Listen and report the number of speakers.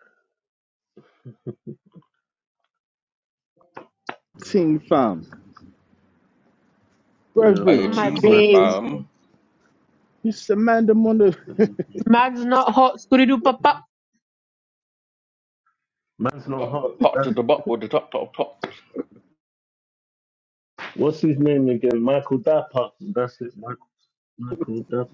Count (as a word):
four